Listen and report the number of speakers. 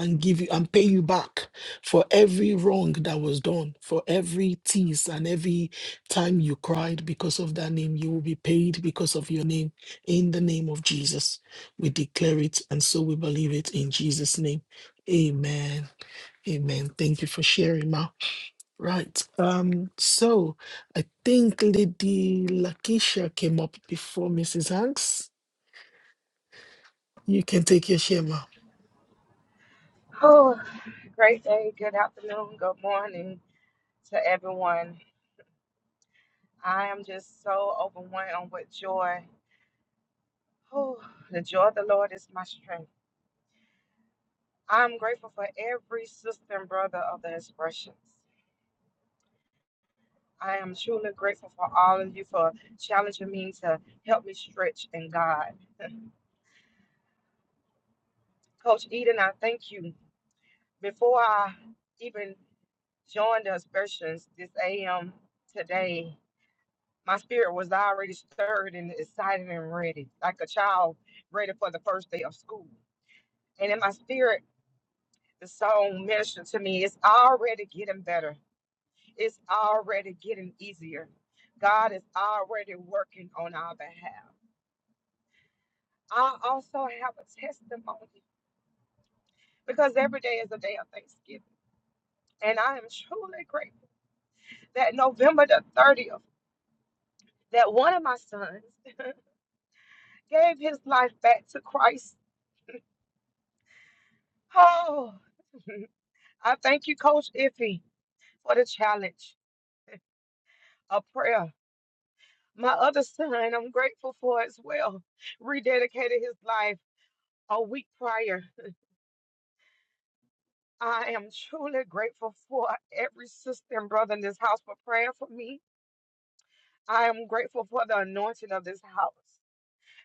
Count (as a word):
two